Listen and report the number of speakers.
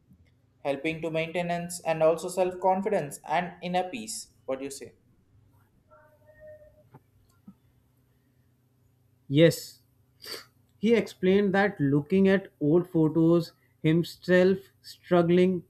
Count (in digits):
2